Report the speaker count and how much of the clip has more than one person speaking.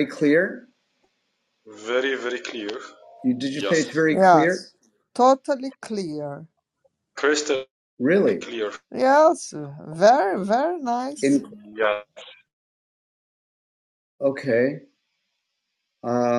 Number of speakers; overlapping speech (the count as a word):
three, about 6%